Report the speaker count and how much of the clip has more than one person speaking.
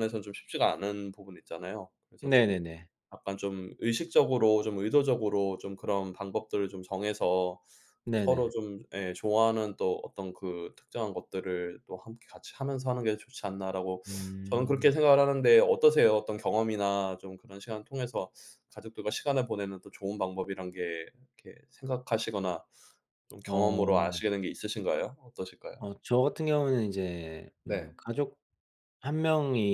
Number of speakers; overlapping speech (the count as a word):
two, about 6%